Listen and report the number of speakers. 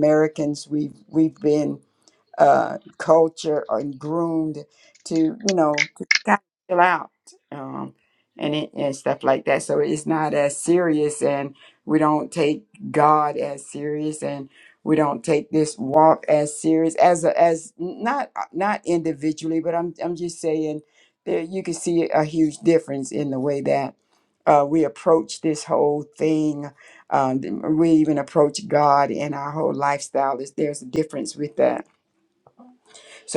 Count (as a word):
one